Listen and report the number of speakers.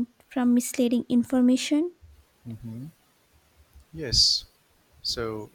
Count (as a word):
two